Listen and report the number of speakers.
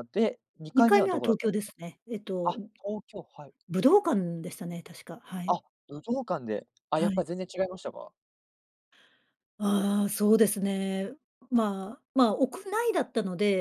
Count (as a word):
two